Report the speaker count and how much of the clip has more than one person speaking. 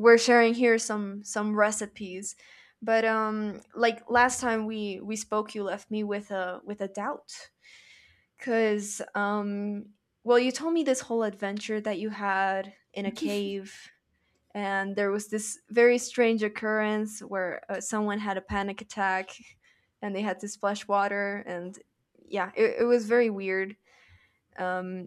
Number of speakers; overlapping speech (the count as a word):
one, no overlap